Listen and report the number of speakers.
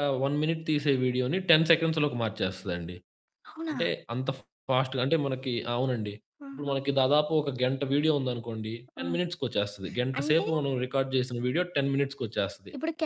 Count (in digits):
2